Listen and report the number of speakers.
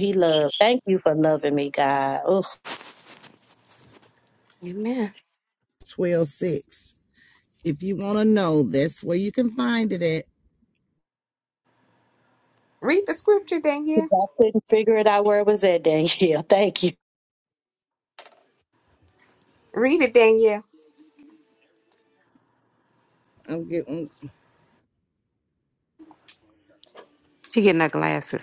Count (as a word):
four